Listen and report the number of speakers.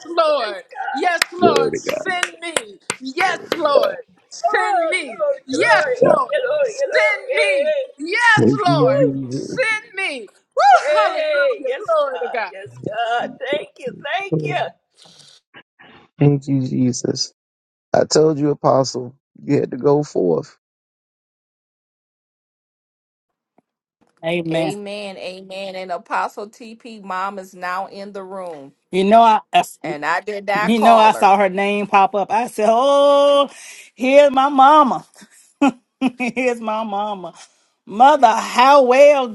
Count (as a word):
five